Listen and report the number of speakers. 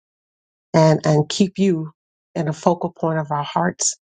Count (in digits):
1